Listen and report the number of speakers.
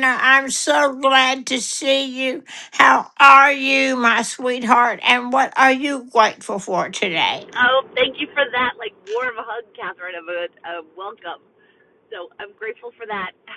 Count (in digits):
2